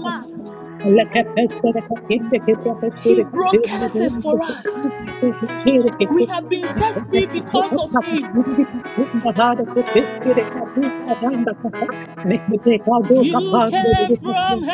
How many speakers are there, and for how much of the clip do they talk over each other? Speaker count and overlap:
2, about 34%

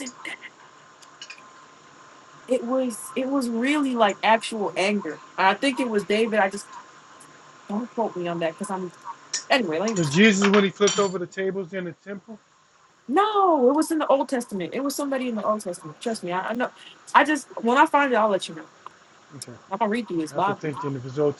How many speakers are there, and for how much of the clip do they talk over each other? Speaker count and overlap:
2, about 3%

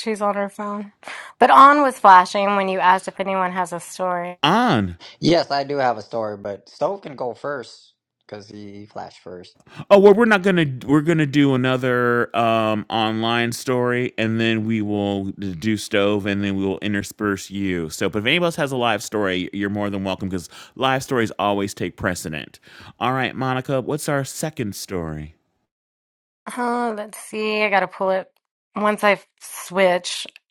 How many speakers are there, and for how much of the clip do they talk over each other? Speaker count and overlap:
3, no overlap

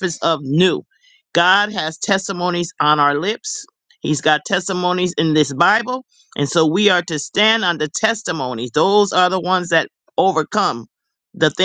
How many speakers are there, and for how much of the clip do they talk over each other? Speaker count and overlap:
1, no overlap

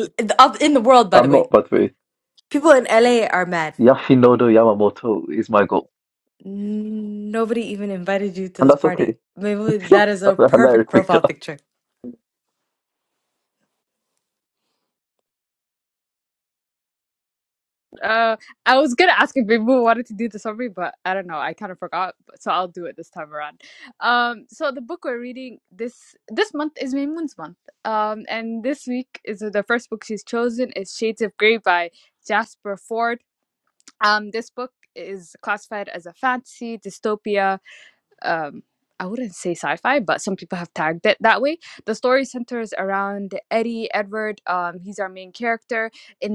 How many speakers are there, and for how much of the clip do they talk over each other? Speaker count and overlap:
3, about 4%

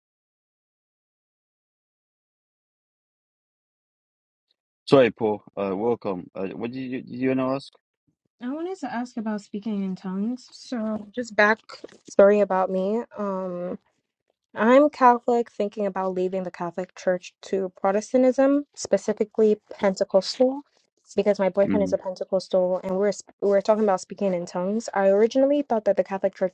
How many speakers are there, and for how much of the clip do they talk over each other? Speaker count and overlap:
2, about 1%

